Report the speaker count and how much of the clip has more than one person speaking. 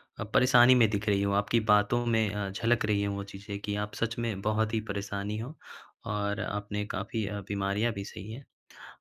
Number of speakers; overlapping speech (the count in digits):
1, no overlap